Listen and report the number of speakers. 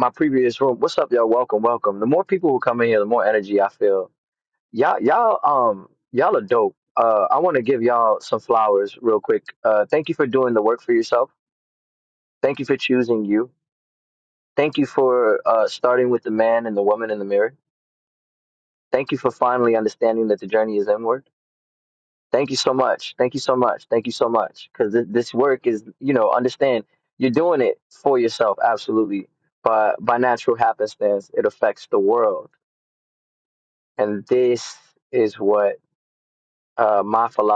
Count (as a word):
one